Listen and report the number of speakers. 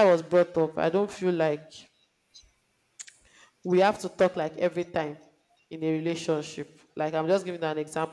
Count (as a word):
one